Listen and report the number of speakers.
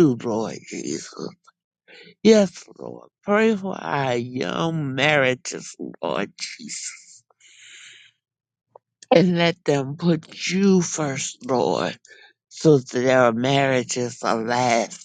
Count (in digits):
1